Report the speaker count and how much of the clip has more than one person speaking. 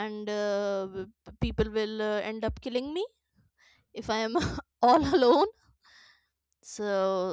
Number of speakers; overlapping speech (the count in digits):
1, no overlap